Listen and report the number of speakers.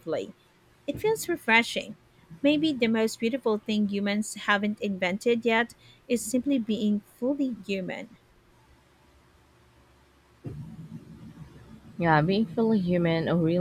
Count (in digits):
2